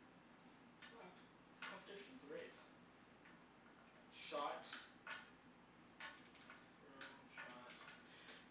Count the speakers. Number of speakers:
one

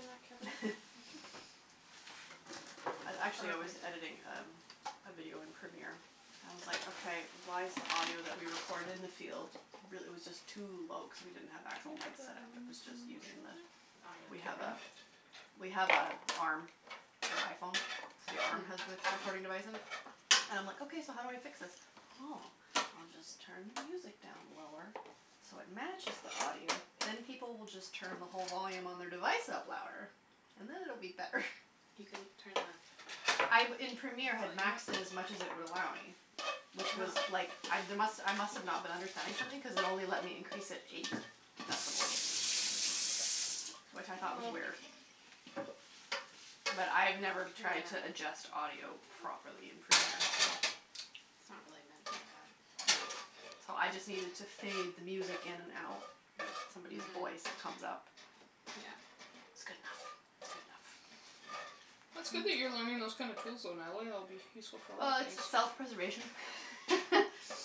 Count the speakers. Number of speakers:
three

